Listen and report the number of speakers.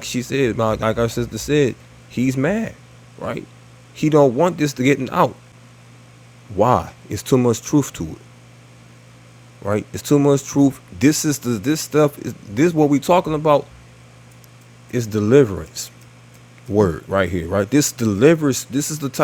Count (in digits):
1